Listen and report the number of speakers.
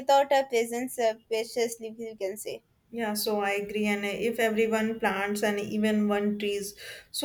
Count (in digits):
2